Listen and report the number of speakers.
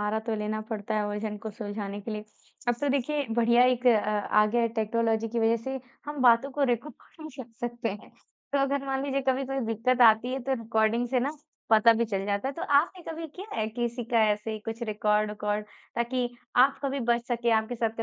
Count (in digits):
1